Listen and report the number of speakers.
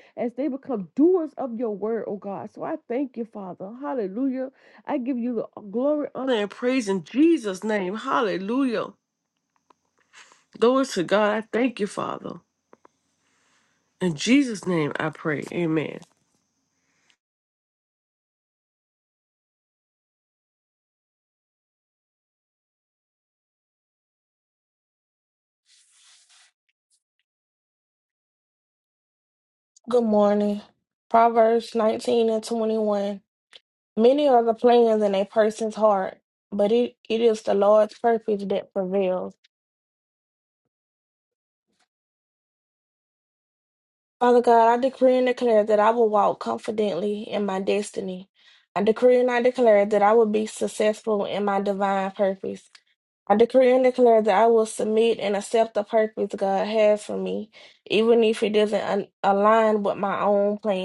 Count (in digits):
2